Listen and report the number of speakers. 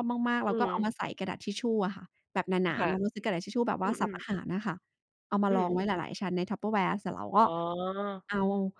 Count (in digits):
2